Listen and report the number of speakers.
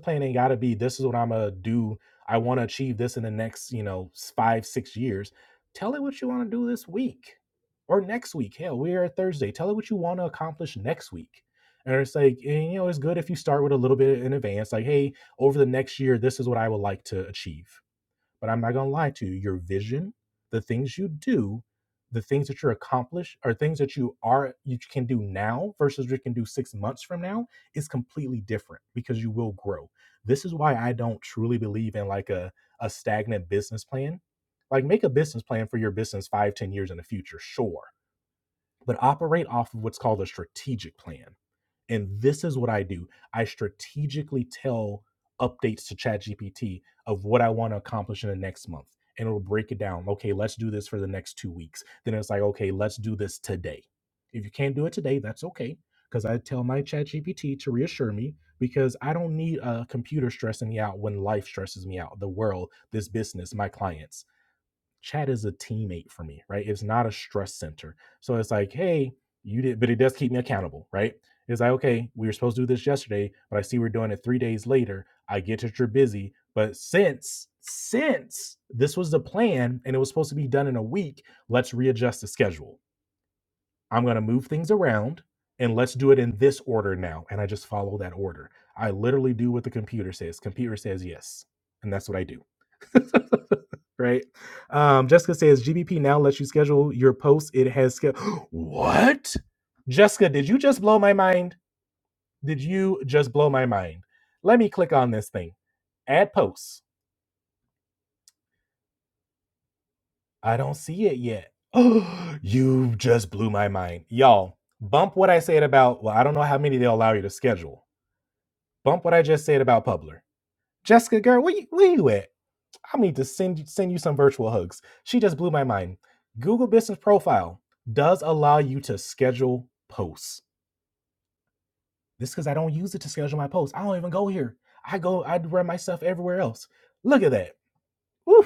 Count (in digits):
1